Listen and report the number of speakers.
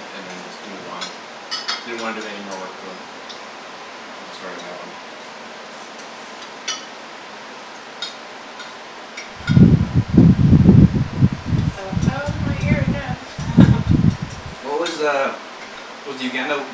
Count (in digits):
3